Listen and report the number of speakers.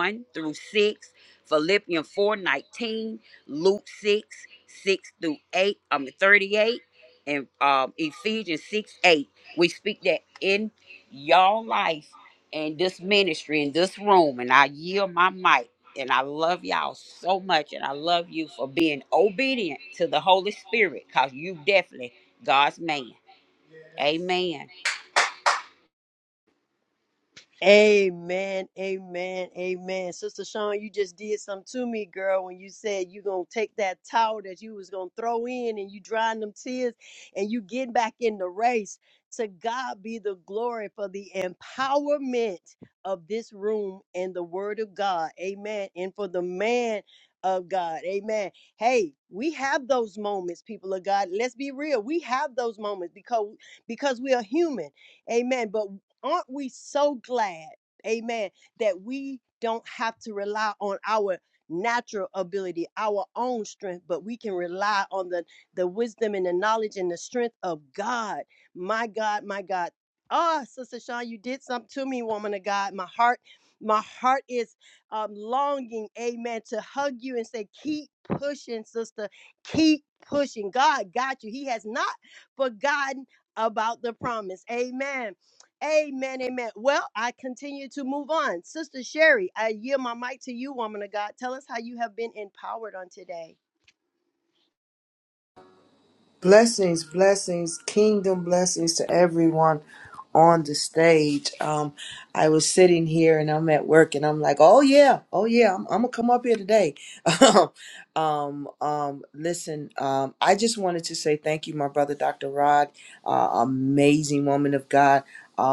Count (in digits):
3